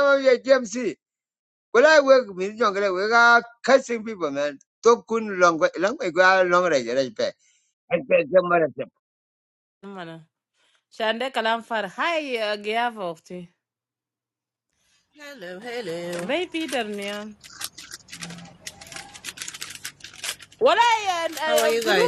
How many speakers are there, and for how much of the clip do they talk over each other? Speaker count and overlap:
3, about 2%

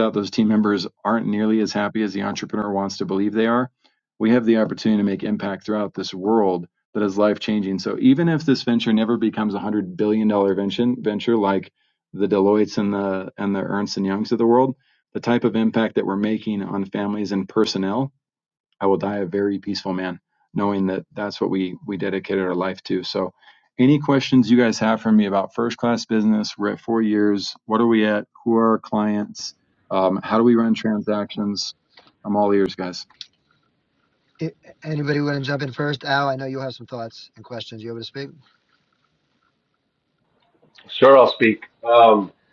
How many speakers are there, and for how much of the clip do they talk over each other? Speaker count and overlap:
3, no overlap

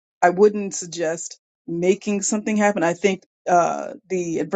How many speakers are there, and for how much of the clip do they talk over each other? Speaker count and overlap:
1, no overlap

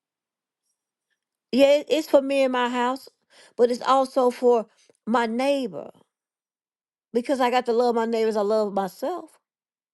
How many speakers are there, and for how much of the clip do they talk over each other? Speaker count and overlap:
1, no overlap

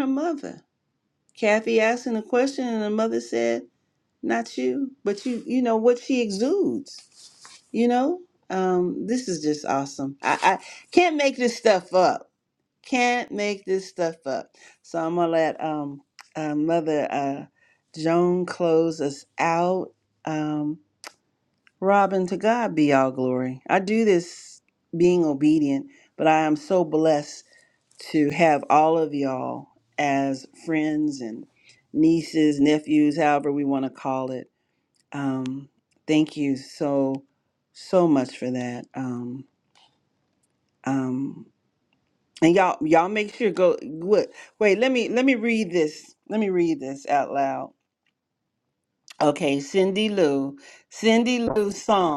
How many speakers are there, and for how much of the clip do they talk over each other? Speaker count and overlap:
1, no overlap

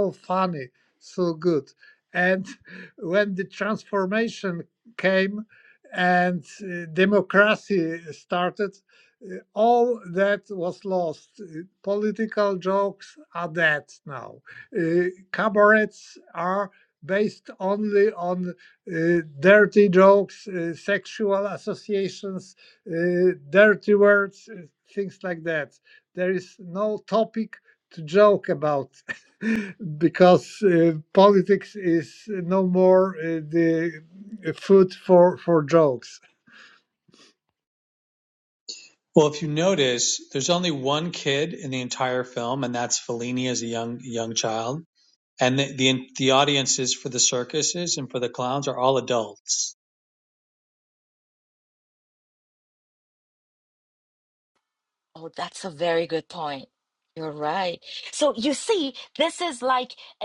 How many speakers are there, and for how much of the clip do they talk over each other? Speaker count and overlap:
3, no overlap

